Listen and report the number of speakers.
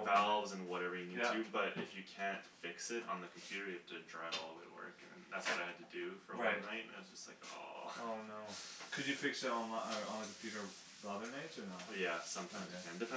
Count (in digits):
2